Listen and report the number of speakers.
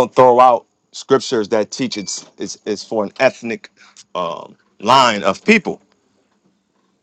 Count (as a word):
one